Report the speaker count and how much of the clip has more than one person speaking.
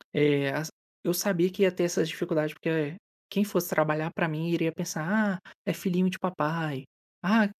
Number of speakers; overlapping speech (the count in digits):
1, no overlap